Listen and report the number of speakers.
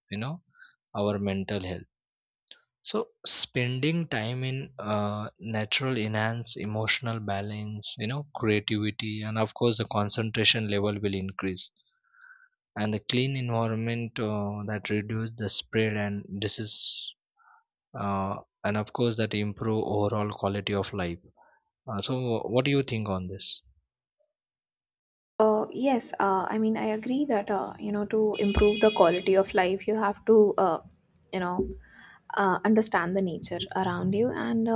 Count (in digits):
2